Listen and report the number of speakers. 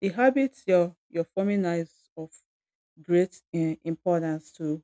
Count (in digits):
1